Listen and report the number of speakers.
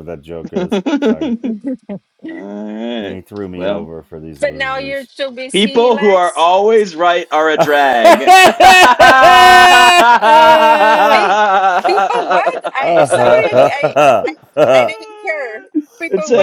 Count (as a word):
three